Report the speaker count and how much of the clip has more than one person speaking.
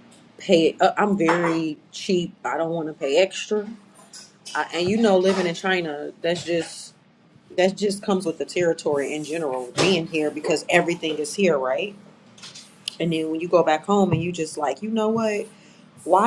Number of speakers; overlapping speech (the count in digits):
1, no overlap